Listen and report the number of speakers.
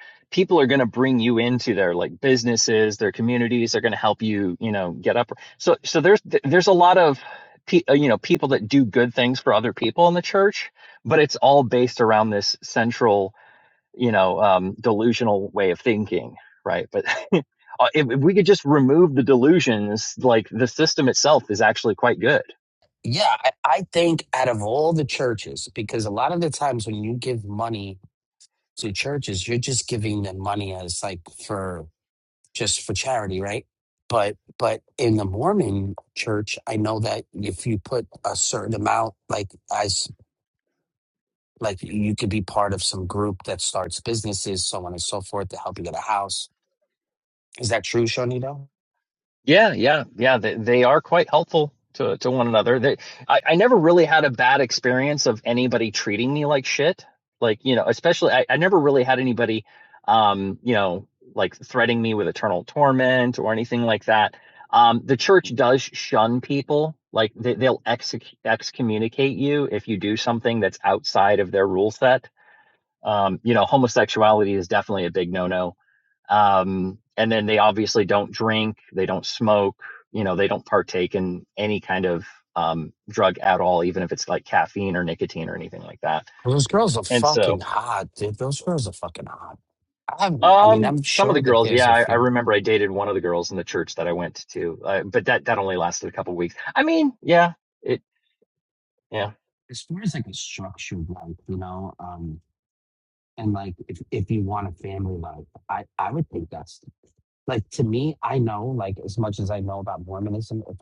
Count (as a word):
two